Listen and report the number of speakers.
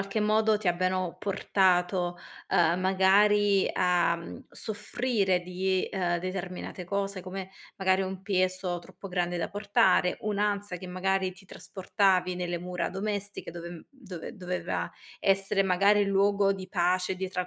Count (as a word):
one